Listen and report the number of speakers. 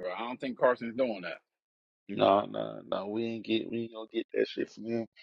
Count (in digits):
2